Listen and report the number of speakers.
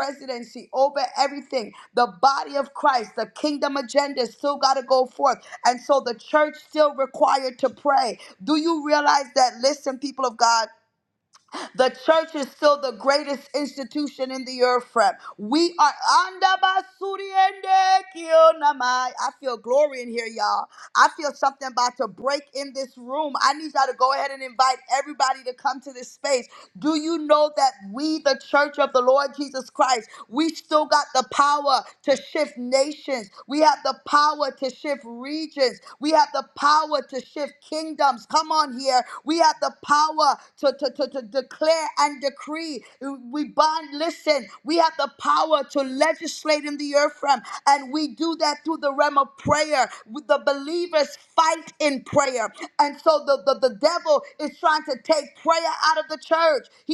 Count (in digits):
1